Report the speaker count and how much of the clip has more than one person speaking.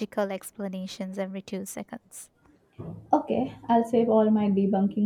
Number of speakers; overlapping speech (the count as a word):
two, no overlap